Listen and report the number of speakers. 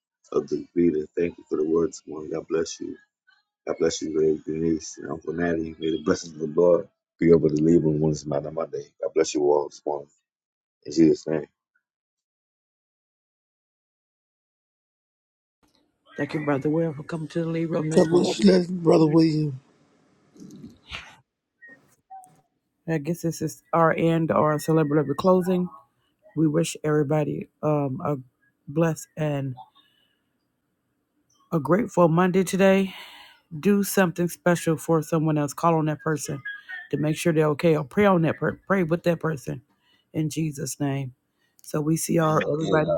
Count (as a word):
three